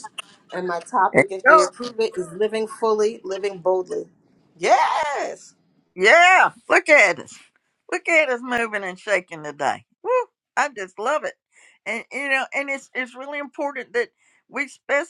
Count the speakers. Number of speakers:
2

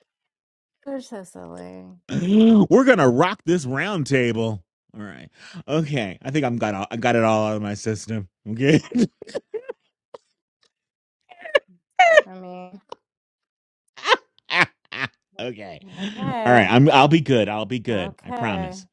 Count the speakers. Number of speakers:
2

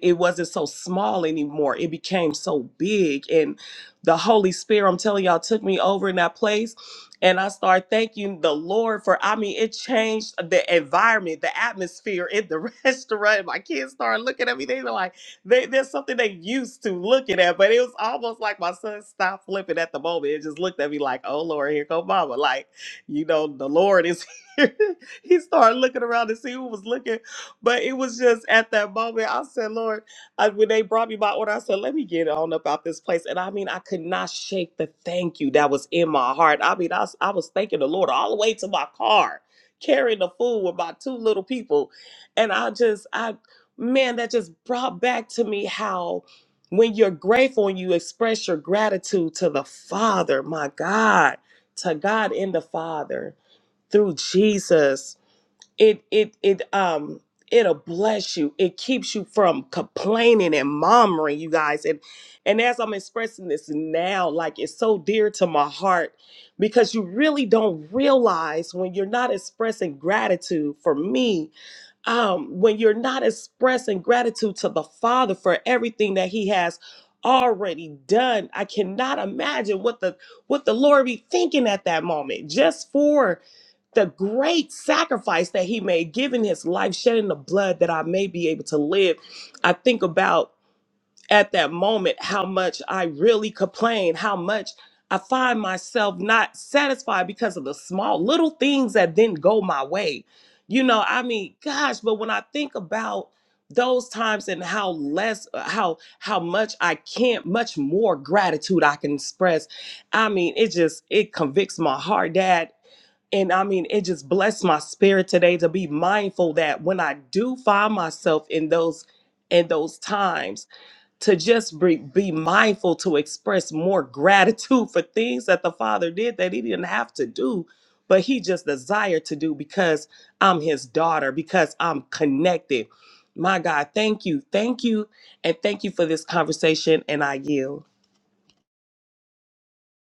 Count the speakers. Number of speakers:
1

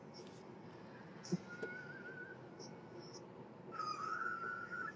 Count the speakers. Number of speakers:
0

